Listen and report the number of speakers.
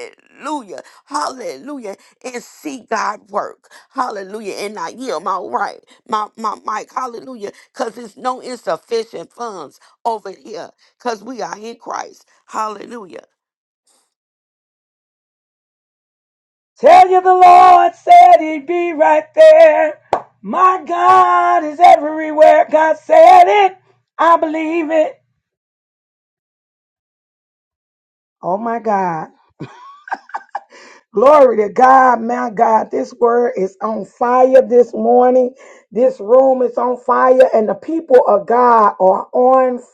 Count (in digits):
2